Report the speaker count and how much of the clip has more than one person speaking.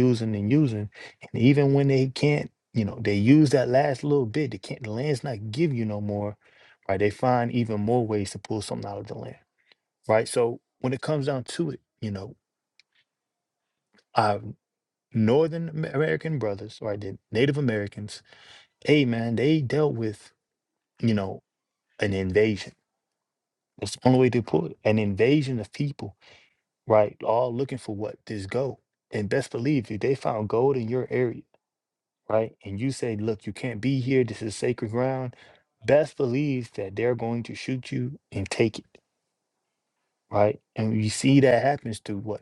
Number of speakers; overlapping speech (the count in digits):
1, no overlap